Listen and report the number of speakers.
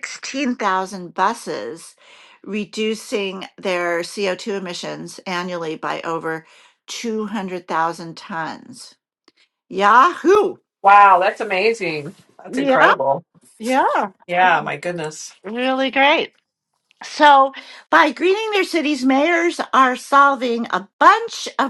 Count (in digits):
2